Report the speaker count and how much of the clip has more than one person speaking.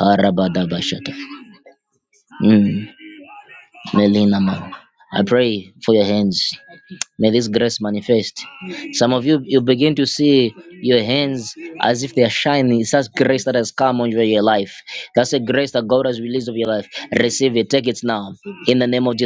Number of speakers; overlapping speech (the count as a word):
one, no overlap